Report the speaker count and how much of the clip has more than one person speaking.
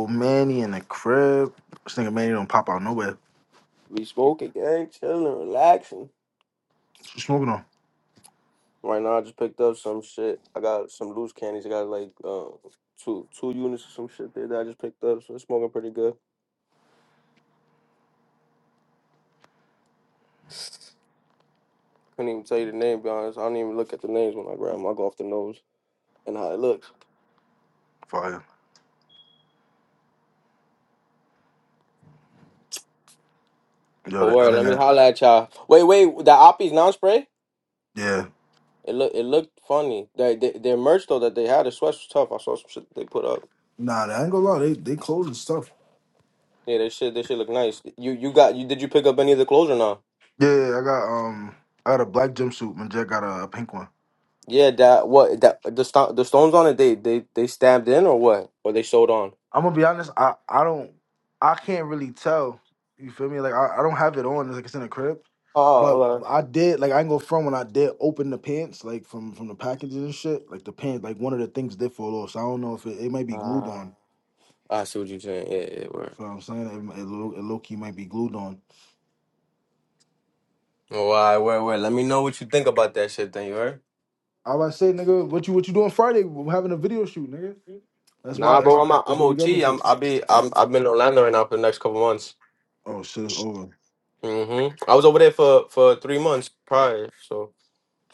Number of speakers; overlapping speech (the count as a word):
two, about 3%